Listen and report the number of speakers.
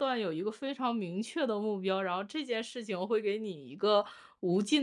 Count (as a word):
one